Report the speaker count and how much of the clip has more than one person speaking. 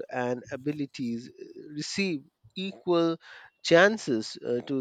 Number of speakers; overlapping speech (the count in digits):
1, no overlap